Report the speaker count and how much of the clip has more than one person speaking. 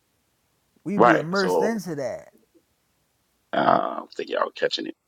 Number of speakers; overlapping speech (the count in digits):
2, about 16%